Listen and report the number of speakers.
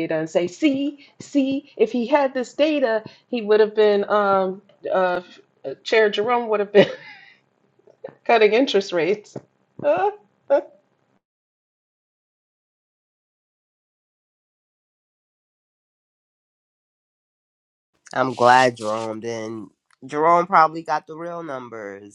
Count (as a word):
two